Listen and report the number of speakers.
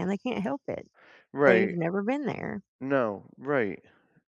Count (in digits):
2